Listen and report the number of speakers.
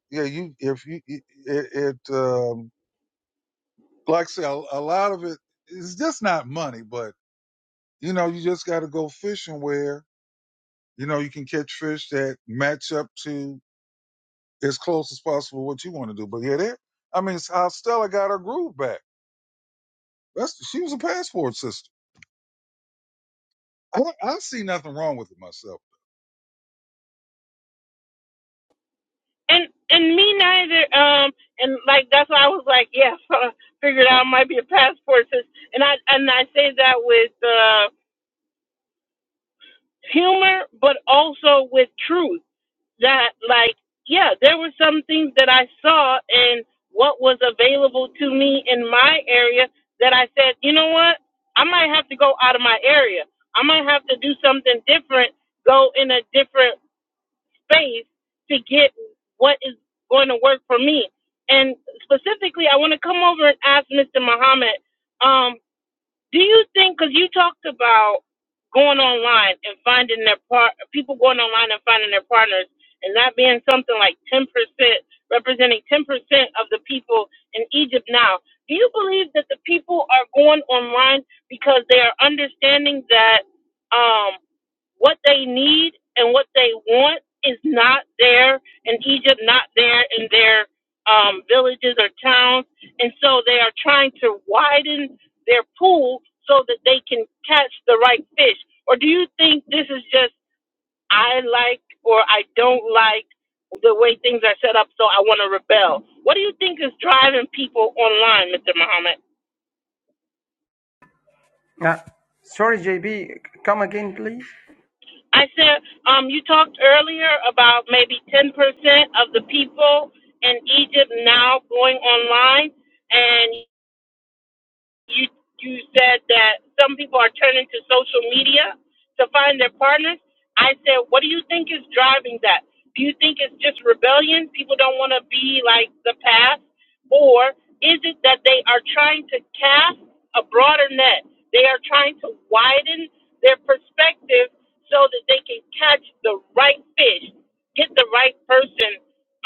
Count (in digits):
3